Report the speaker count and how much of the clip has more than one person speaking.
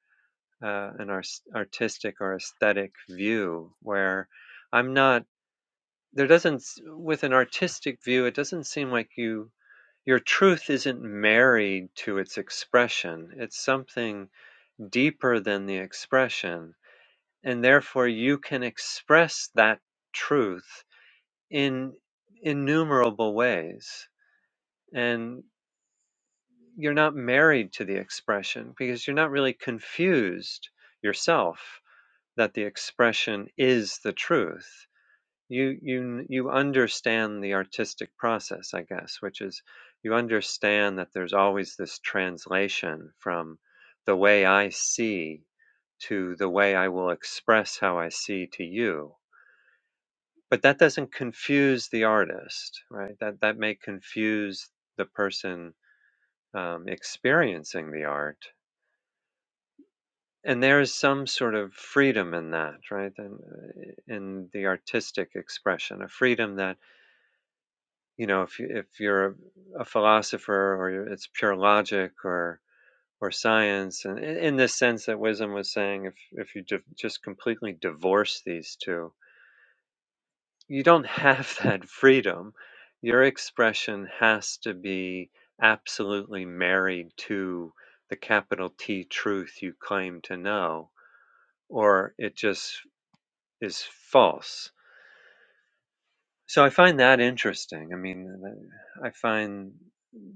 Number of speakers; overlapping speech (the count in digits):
1, no overlap